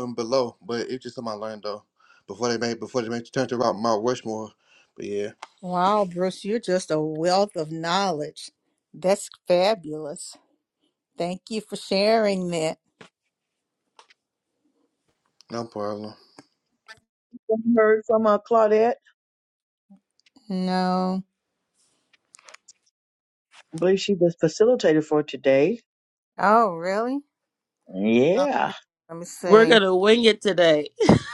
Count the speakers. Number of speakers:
four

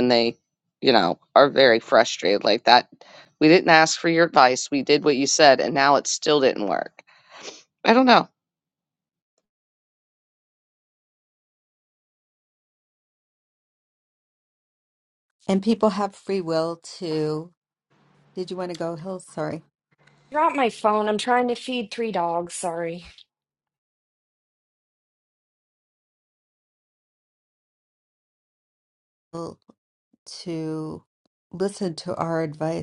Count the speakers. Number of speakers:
three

